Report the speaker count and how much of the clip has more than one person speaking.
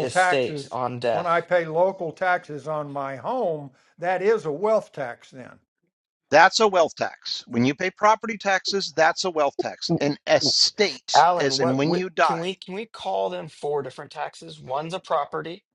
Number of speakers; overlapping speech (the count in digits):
3, about 15%